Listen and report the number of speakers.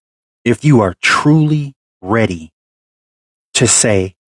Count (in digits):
1